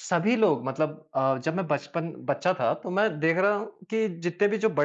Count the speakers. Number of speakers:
one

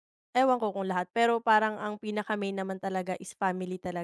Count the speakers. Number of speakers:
one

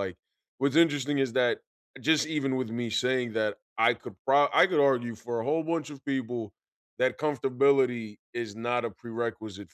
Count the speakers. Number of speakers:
one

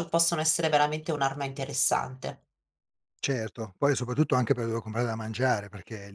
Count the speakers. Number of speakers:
two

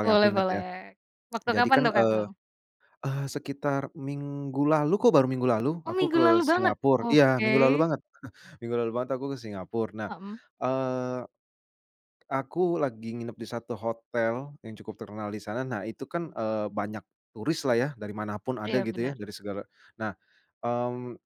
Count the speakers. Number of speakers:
two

